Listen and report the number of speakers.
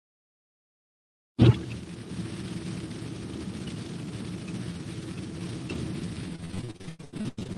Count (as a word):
zero